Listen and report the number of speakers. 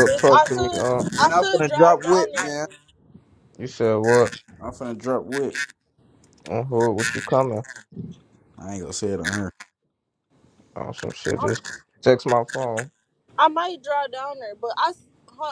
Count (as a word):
three